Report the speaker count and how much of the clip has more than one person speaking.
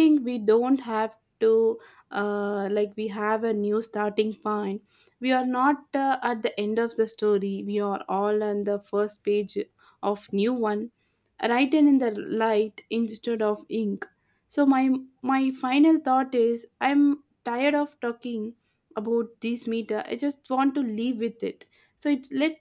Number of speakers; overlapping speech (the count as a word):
one, no overlap